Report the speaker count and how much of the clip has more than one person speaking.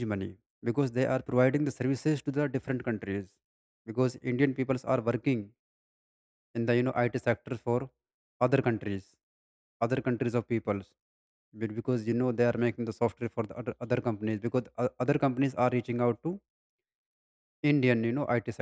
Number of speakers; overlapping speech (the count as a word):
one, no overlap